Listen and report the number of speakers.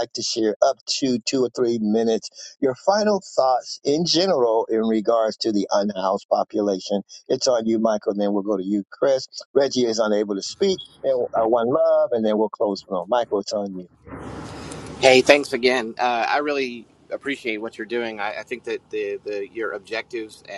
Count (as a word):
two